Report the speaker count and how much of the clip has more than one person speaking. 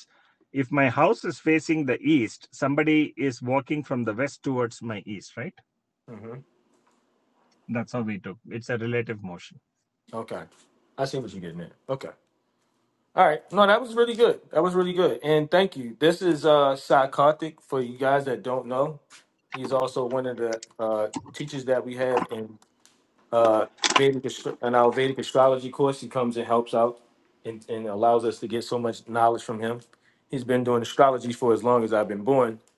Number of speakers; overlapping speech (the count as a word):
two, no overlap